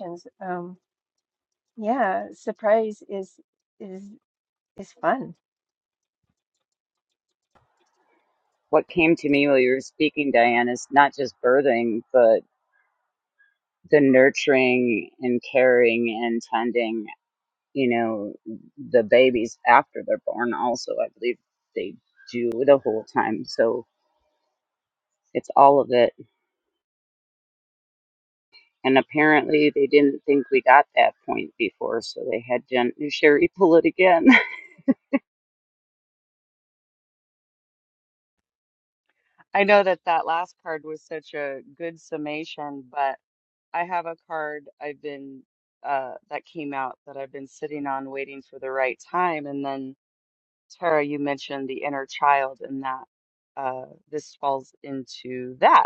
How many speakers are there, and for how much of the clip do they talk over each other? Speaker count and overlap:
3, no overlap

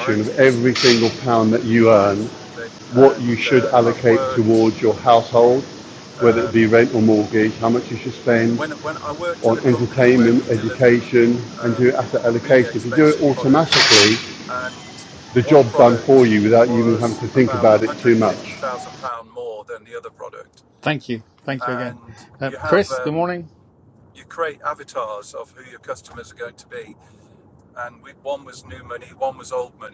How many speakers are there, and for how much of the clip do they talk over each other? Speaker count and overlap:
3, about 36%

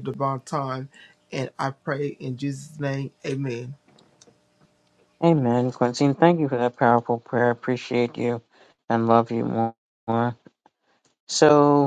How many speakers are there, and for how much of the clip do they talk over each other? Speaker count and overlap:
2, no overlap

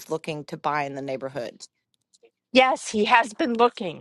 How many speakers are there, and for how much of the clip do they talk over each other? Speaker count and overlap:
2, no overlap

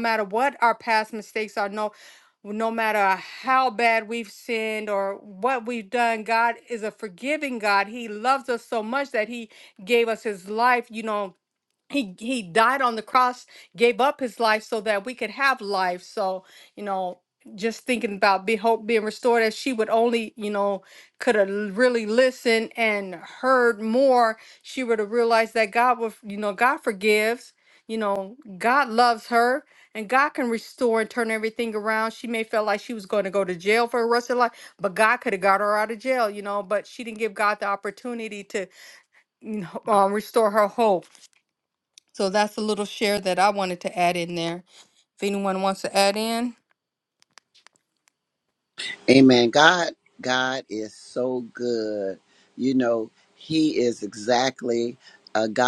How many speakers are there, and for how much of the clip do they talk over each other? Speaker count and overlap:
2, no overlap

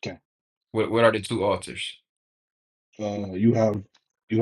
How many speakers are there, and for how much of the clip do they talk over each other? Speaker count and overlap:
2, no overlap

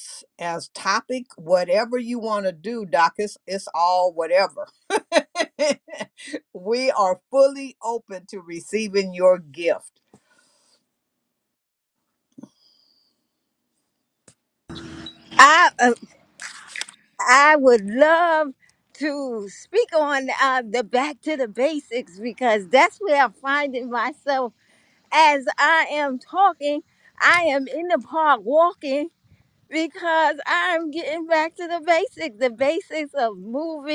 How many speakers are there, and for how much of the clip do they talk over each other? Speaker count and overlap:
2, no overlap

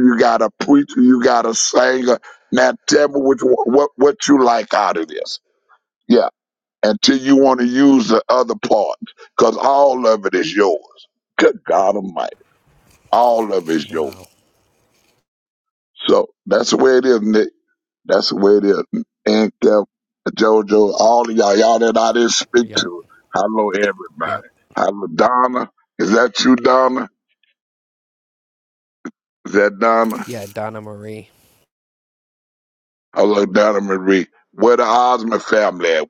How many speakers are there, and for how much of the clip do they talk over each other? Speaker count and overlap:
2, about 2%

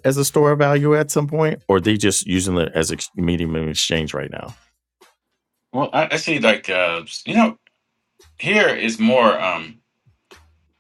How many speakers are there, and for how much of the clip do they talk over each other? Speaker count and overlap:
2, no overlap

